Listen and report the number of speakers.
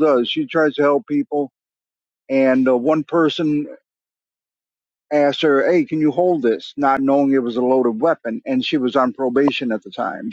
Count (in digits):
1